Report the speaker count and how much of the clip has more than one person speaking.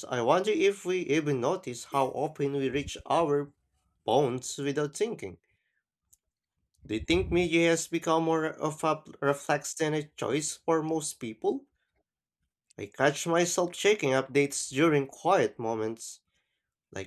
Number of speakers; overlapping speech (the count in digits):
1, no overlap